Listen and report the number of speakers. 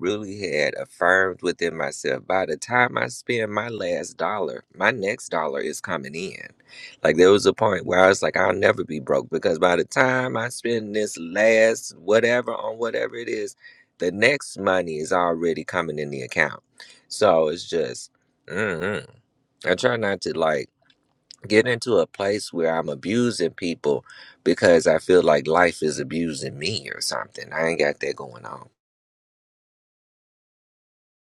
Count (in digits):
1